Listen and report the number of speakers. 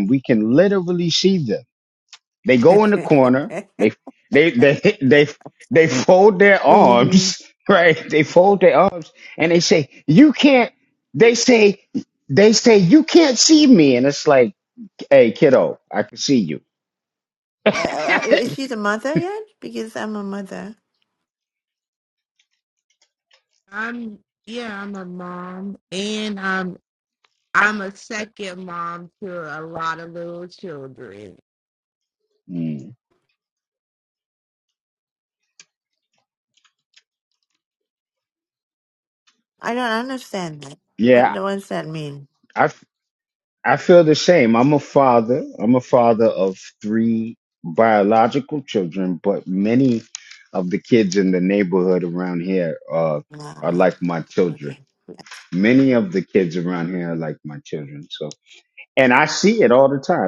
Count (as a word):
three